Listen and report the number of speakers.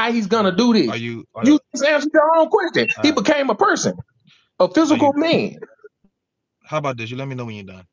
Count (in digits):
2